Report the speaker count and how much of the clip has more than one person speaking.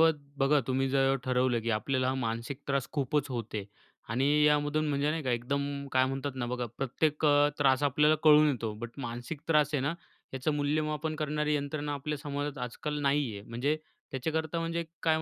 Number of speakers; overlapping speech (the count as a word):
one, no overlap